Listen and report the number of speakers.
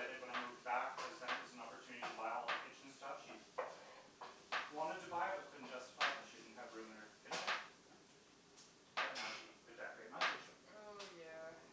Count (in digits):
2